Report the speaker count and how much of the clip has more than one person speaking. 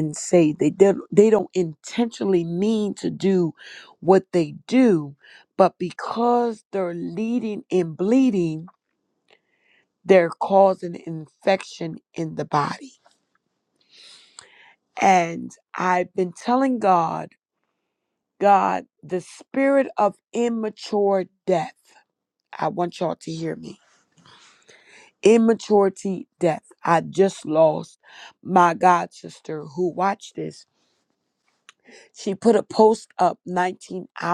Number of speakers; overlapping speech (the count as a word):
one, no overlap